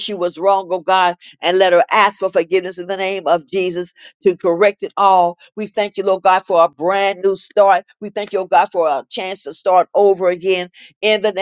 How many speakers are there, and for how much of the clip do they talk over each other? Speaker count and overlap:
one, no overlap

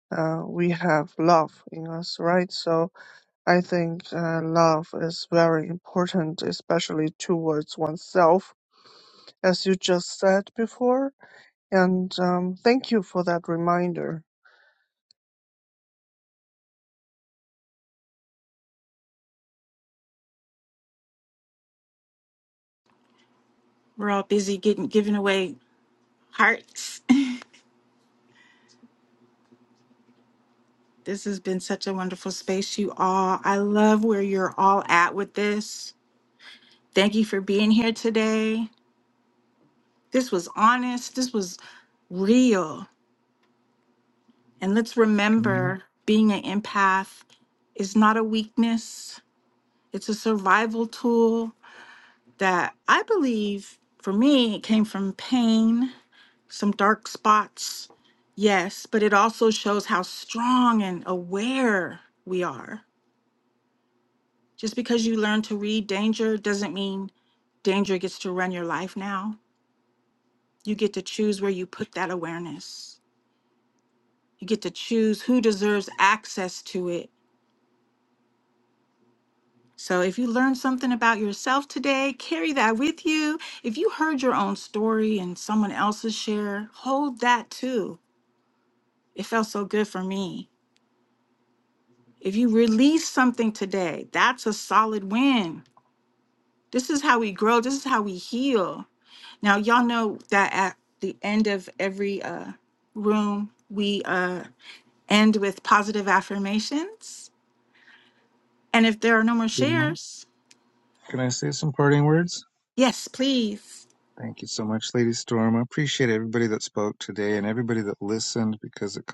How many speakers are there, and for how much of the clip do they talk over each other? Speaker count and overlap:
three, about 1%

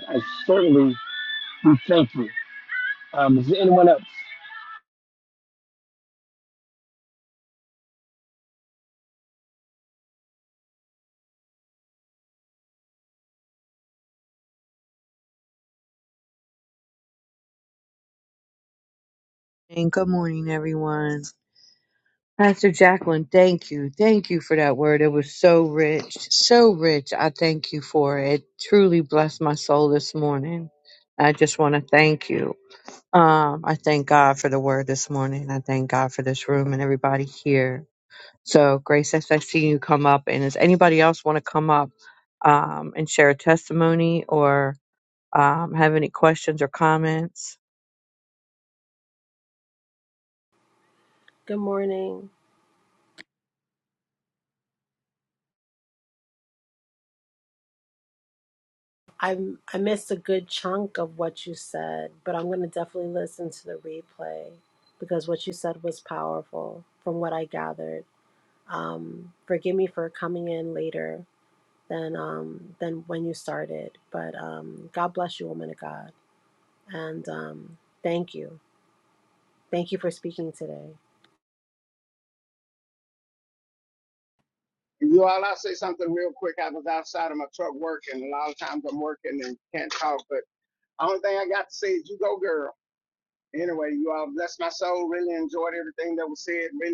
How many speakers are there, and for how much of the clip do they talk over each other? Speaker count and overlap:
four, no overlap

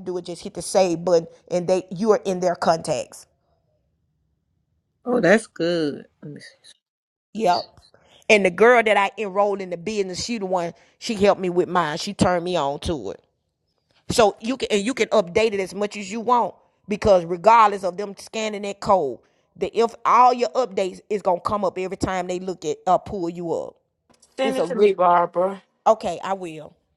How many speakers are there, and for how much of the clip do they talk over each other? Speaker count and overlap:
three, about 2%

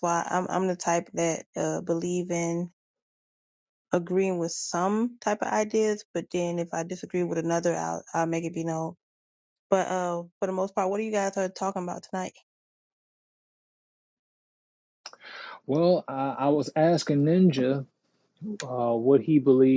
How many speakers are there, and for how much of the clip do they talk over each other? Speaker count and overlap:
two, no overlap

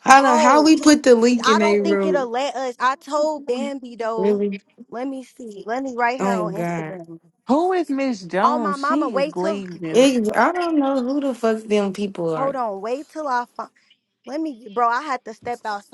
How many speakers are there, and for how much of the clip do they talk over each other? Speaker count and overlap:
three, about 24%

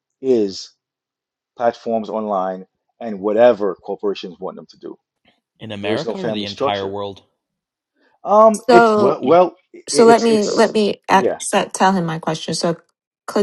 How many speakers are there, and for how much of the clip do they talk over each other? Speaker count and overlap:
three, about 19%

